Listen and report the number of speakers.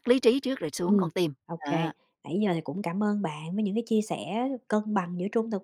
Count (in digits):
2